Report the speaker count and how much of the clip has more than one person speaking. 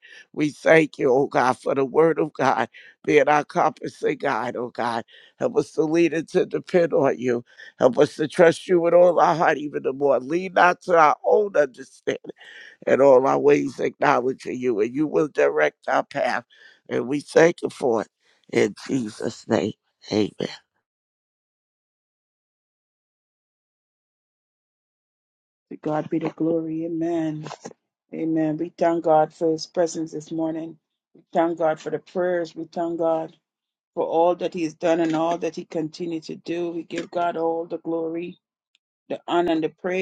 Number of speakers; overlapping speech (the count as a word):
two, no overlap